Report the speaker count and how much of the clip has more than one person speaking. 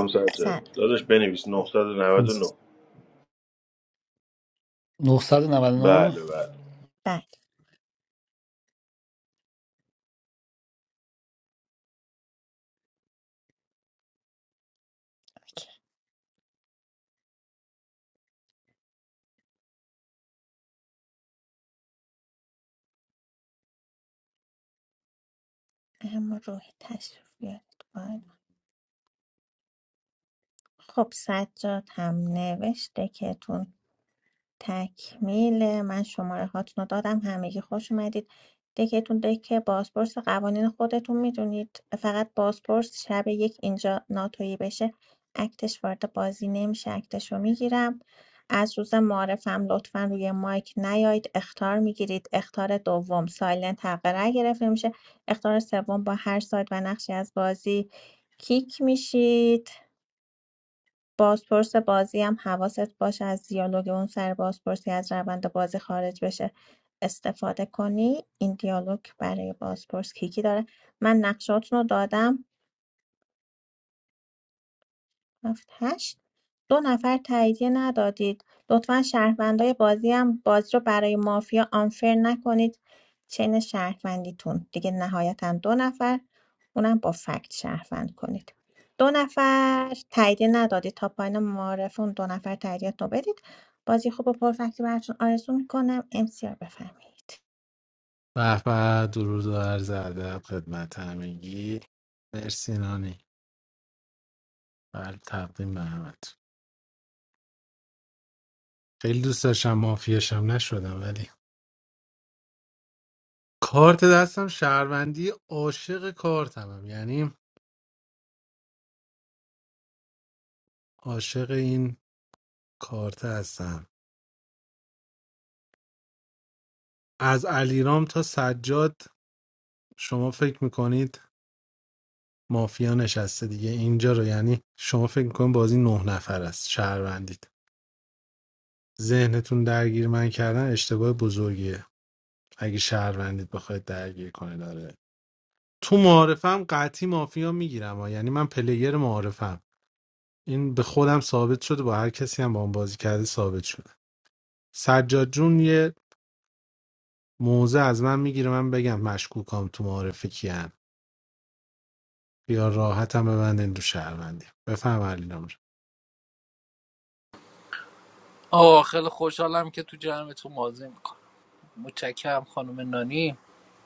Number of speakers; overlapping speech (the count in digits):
5, under 1%